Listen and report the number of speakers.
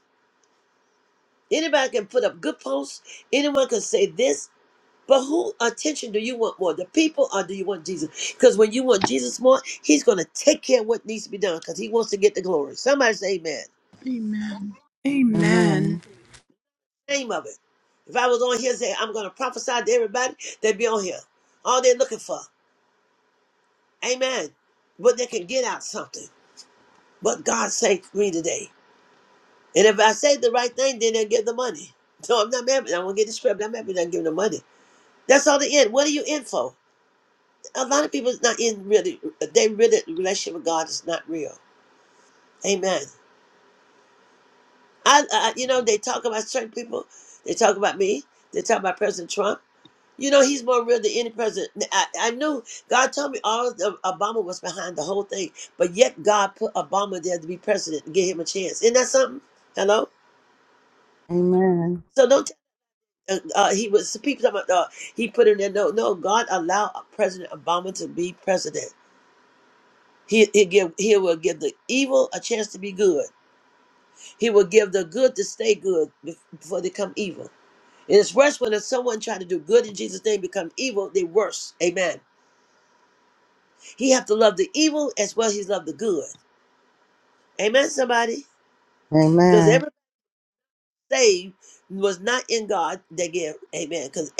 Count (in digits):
3